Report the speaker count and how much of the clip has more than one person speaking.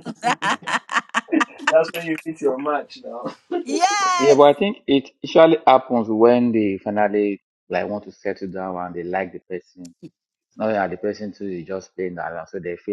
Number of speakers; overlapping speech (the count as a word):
three, about 2%